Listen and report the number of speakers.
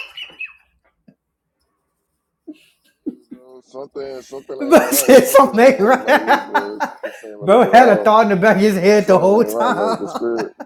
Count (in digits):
2